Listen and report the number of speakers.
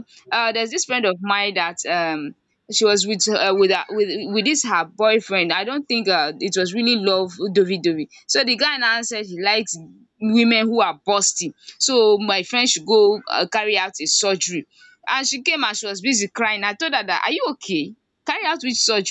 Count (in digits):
1